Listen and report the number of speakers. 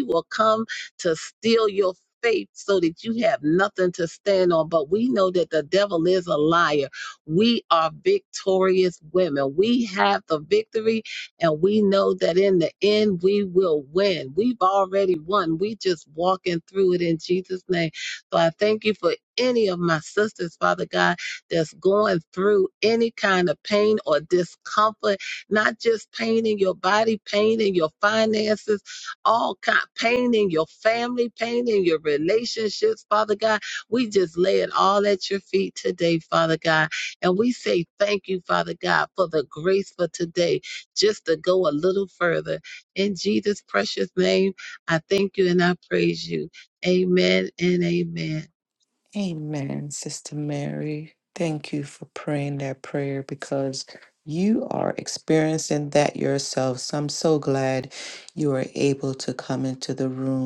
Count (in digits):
2